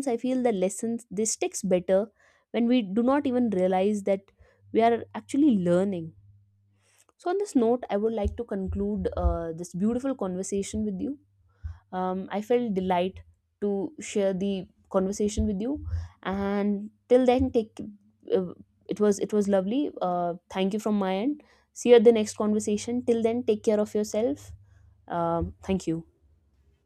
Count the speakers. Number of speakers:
1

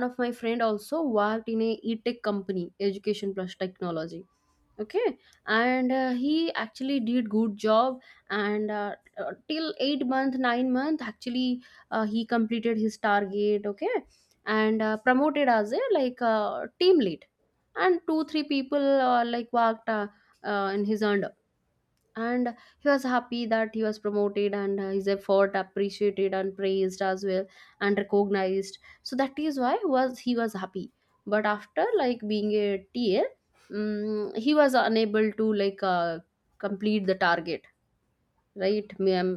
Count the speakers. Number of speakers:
1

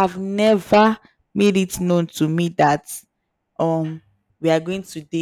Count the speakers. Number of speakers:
1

